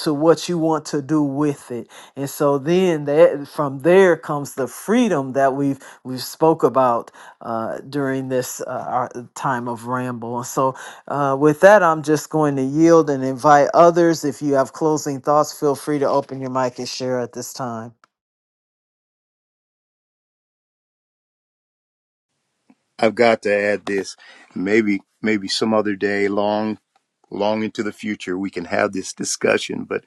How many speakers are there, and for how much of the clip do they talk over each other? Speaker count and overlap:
two, no overlap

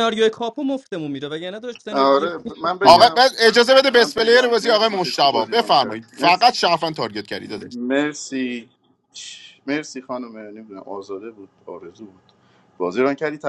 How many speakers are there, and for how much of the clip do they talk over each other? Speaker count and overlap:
three, about 28%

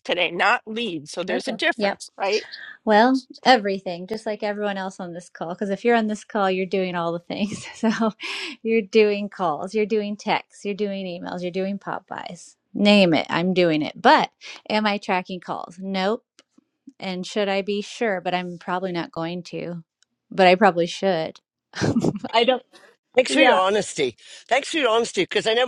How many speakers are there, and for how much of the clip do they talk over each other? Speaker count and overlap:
three, about 4%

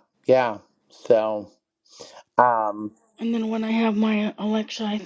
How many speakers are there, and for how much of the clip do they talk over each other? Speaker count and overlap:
two, no overlap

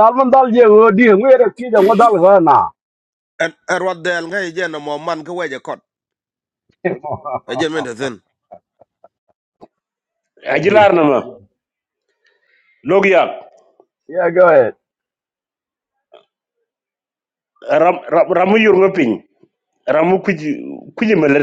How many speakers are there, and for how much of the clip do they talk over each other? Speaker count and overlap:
three, about 1%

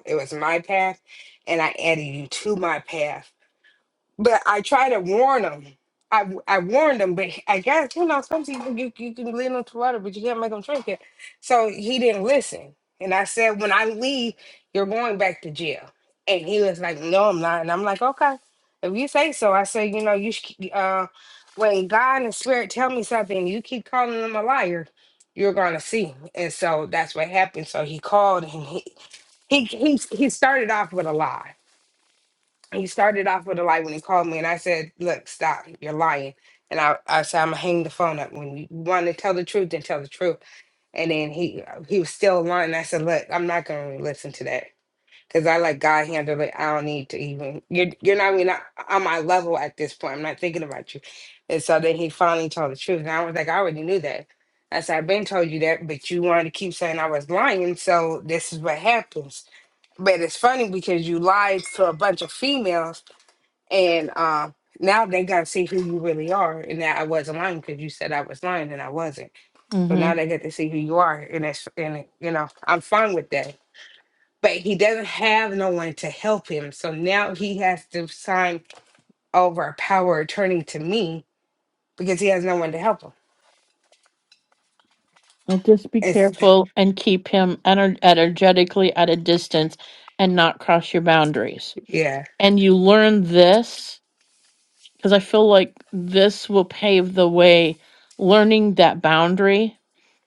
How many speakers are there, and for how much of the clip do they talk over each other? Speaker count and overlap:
two, under 1%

